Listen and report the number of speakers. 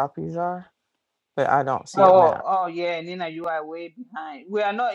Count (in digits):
2